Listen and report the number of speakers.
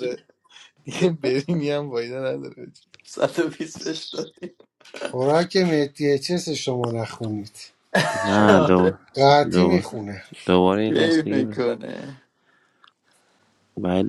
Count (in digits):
4